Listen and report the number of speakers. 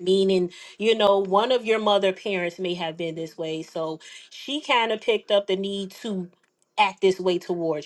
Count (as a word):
one